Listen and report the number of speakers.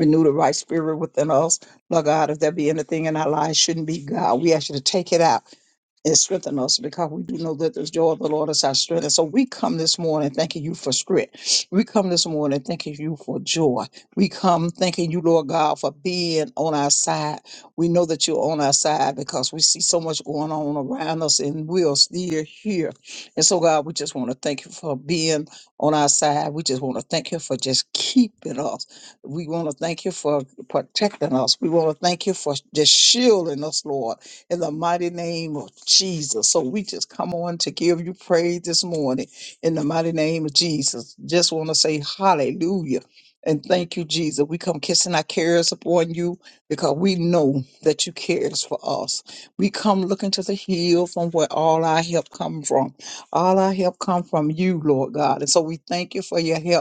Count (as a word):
one